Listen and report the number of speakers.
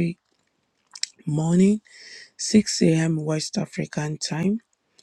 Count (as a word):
one